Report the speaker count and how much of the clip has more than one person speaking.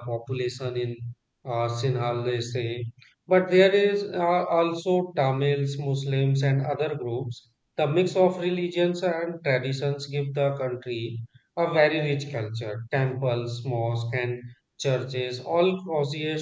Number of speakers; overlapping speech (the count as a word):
one, no overlap